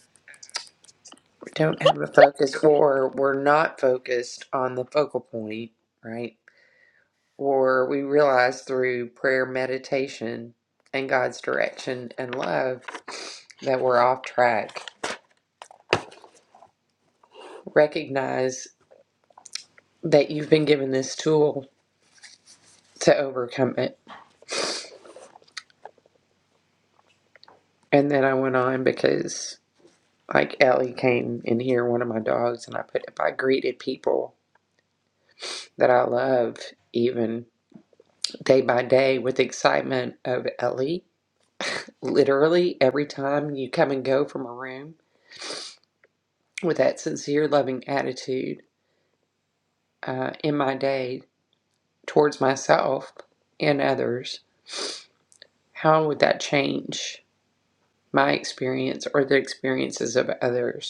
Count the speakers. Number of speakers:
one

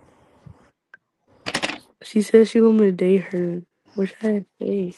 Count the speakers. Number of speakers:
one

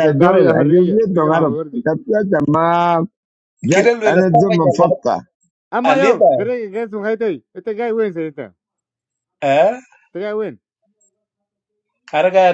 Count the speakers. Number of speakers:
three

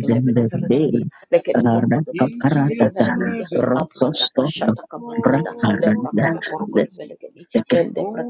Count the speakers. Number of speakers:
three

